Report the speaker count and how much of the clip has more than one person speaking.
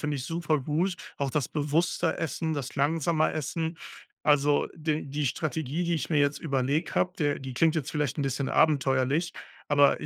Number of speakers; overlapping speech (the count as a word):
one, no overlap